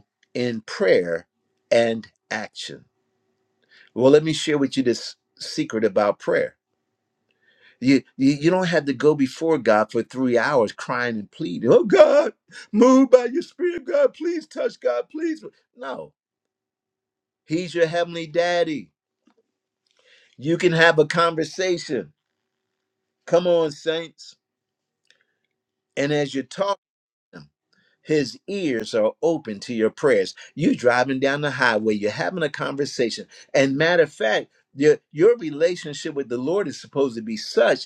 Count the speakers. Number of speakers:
1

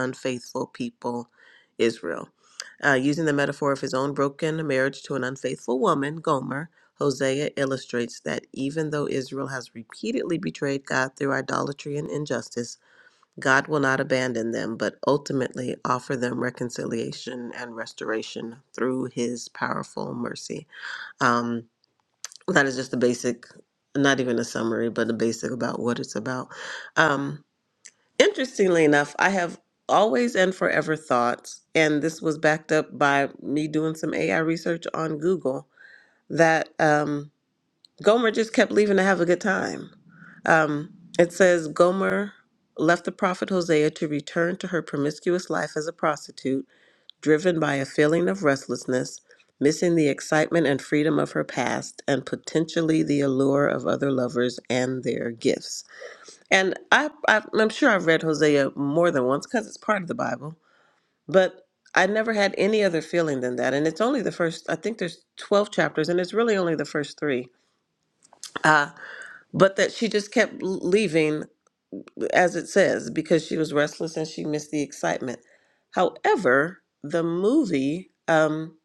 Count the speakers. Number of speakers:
1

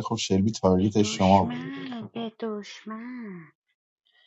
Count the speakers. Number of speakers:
2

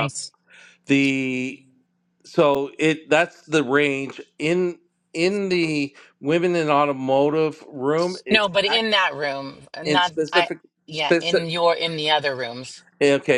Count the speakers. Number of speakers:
2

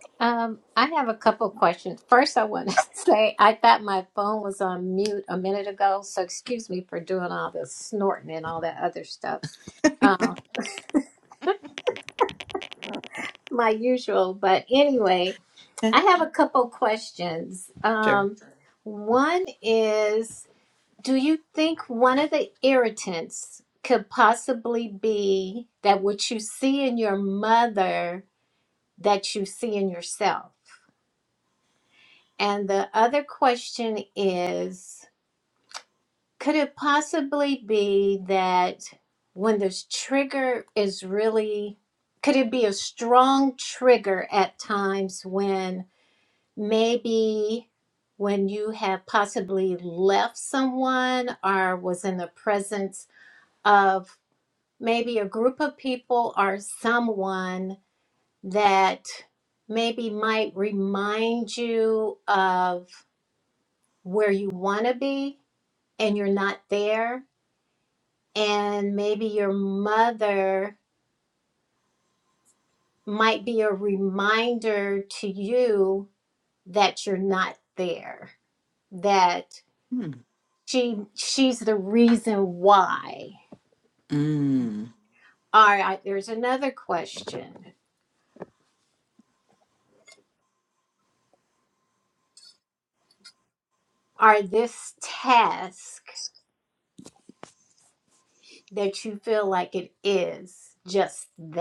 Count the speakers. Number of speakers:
2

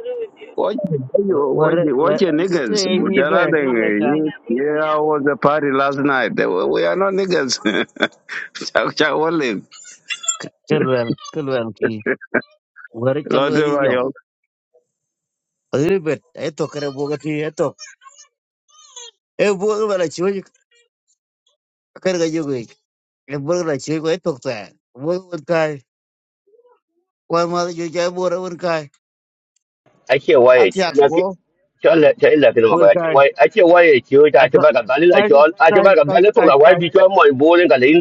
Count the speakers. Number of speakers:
4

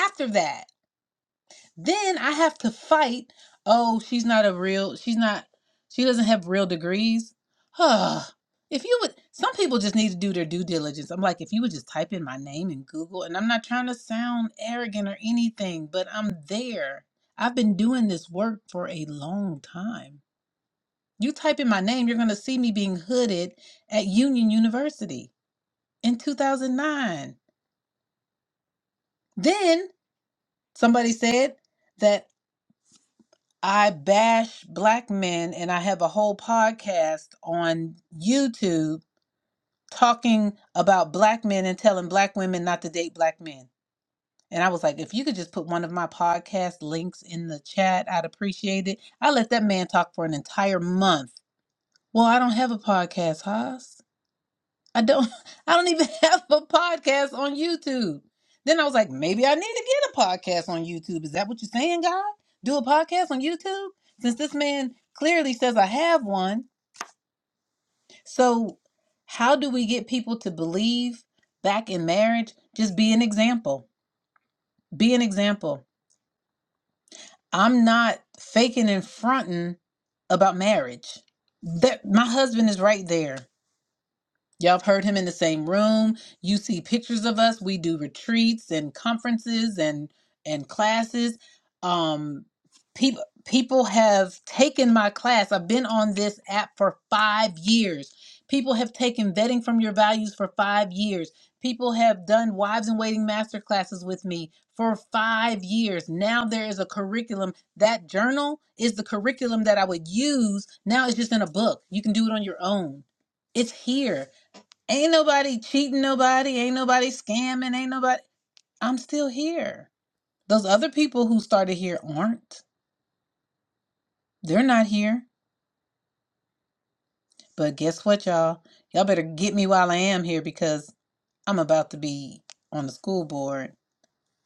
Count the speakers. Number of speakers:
1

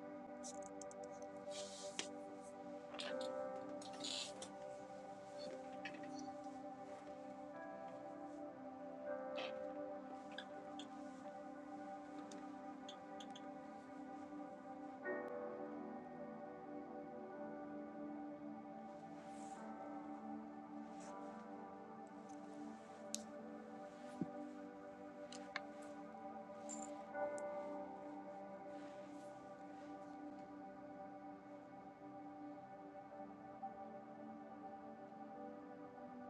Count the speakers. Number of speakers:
0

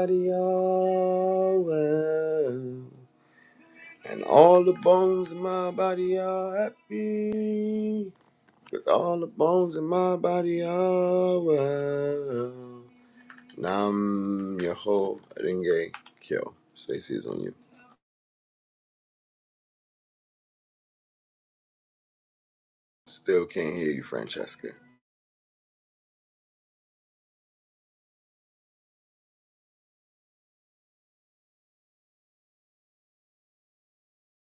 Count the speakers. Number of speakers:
1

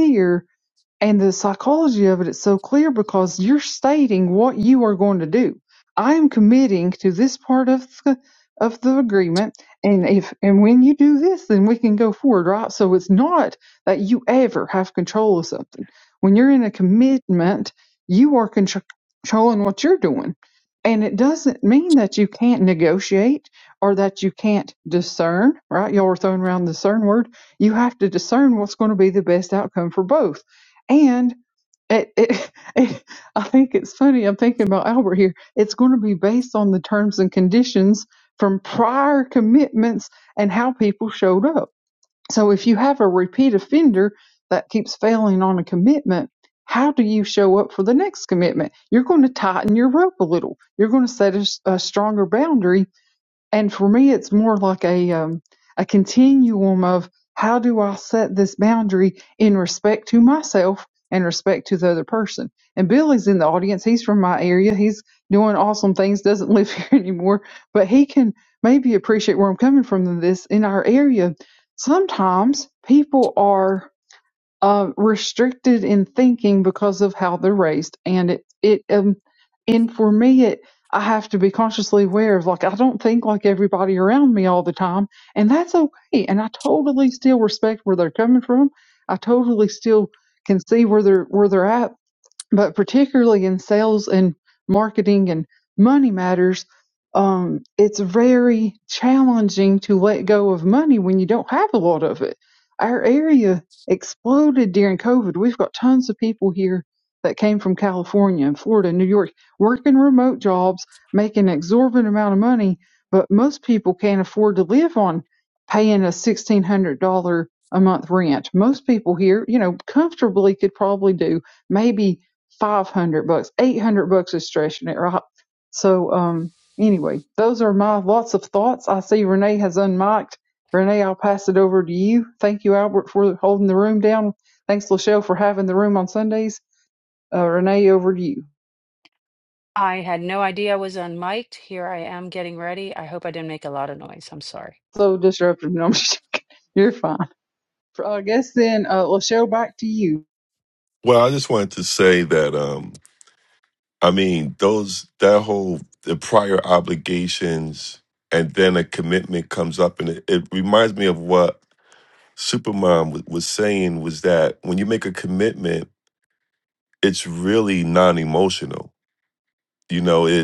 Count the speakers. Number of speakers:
3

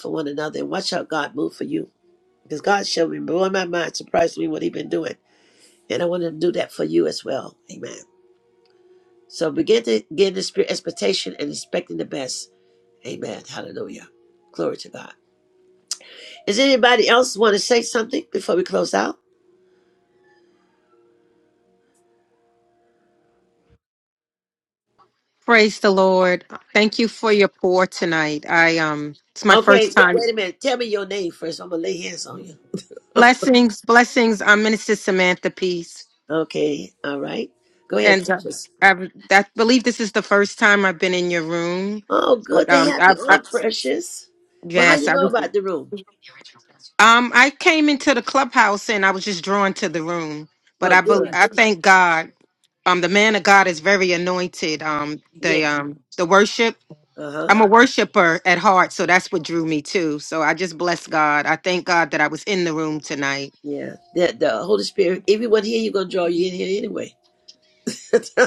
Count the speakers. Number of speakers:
2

